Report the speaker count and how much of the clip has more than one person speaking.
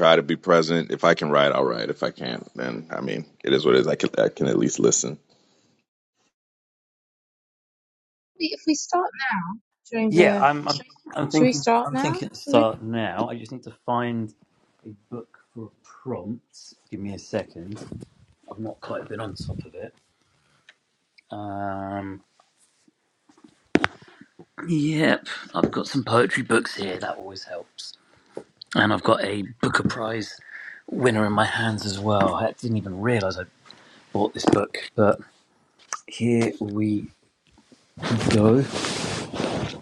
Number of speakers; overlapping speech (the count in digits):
3, about 3%